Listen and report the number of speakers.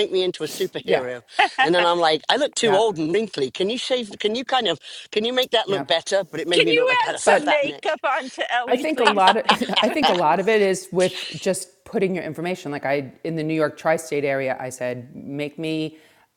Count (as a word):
three